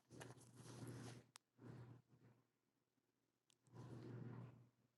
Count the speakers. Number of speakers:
0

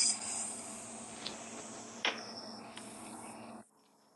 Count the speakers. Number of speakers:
0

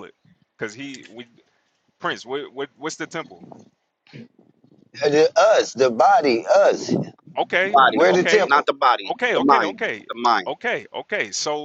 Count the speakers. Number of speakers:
3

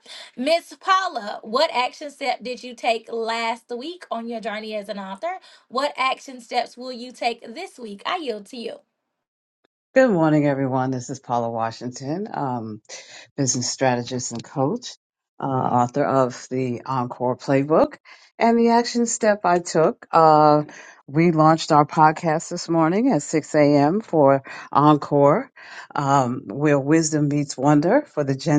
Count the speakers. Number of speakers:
2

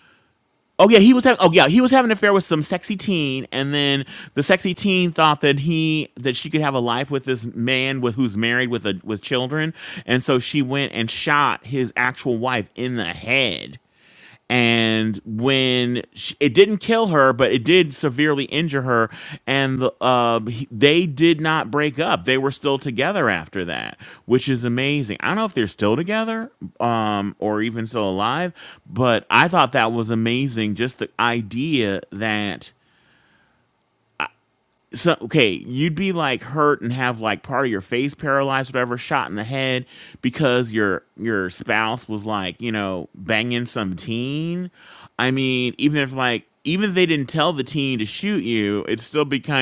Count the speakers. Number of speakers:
1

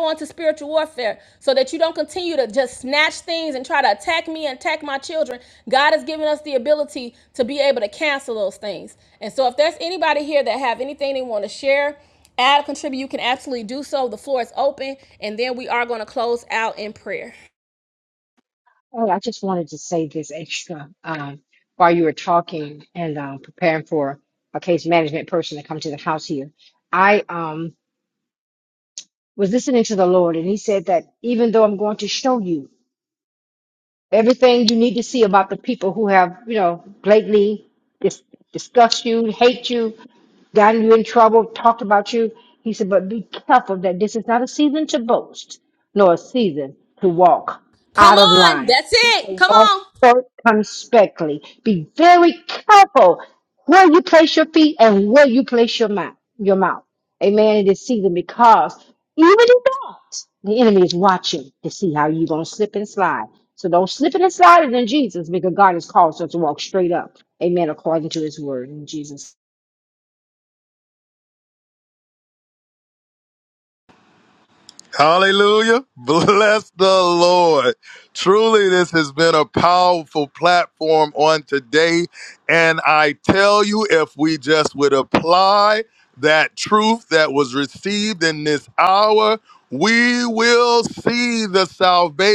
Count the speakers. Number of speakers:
3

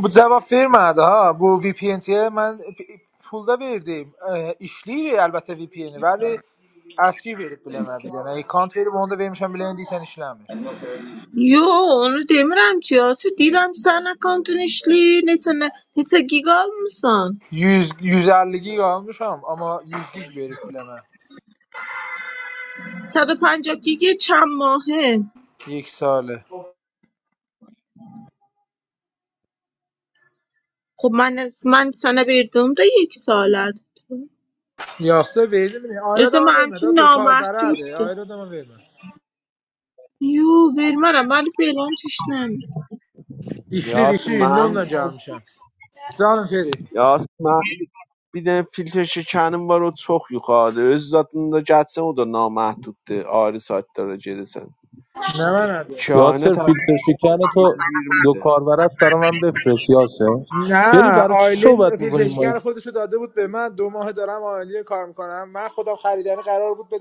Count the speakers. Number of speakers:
4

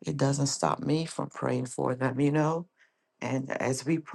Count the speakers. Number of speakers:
1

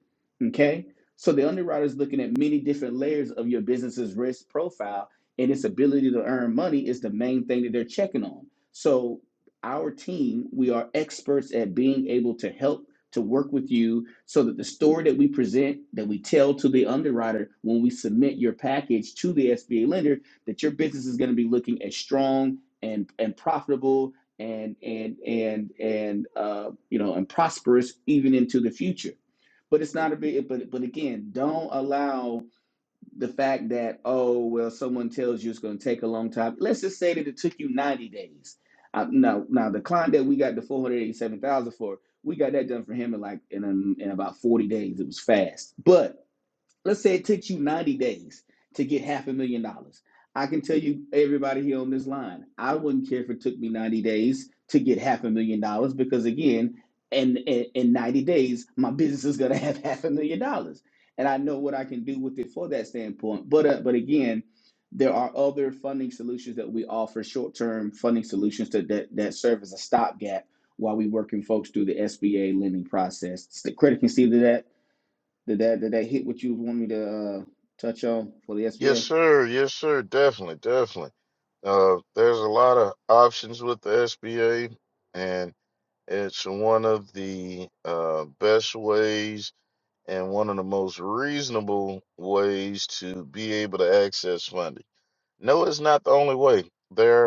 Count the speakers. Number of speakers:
2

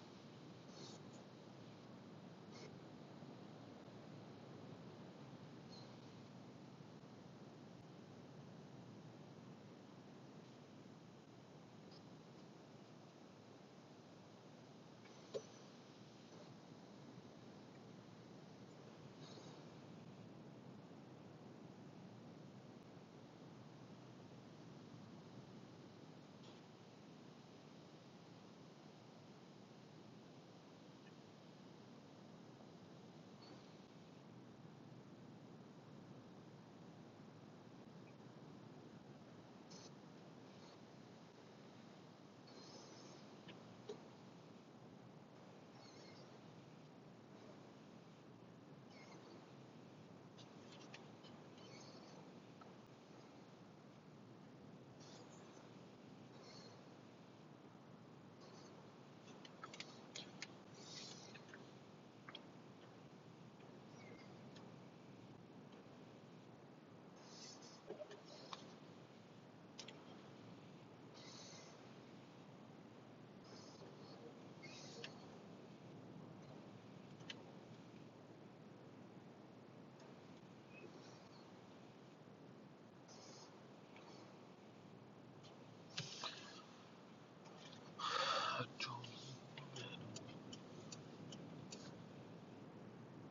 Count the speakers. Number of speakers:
0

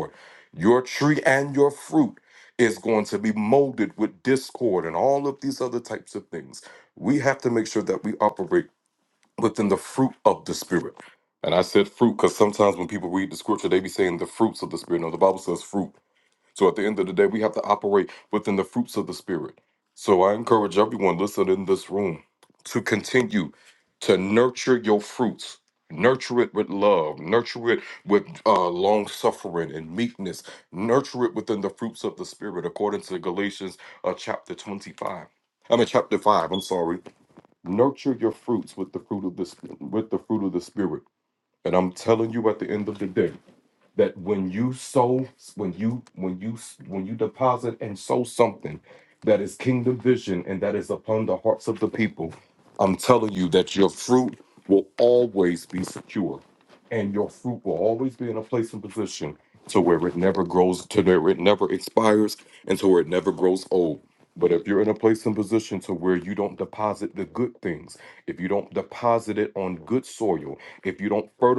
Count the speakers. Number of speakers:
1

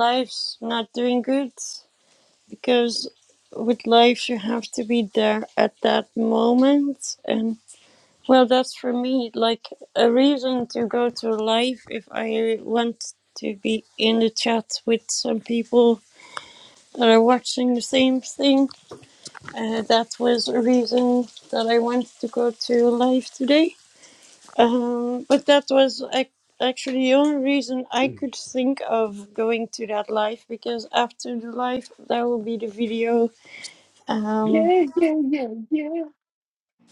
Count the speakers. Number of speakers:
2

